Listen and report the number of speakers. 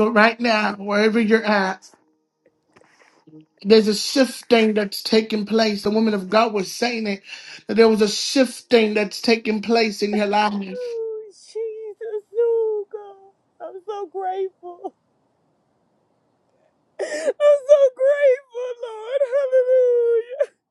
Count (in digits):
2